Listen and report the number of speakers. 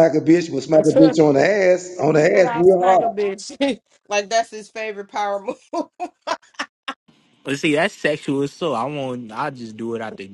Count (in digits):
3